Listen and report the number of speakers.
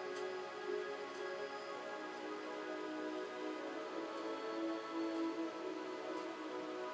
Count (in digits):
0